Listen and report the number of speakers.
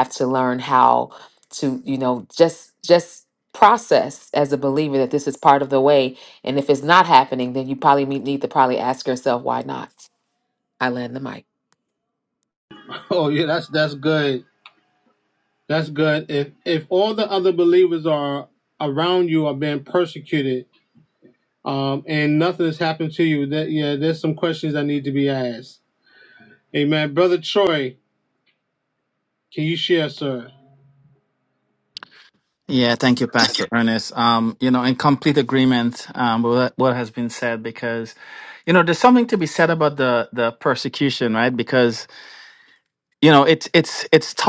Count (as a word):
three